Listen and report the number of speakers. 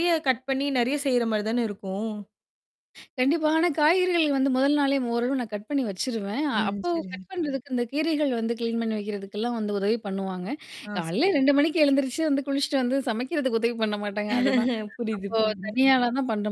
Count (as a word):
two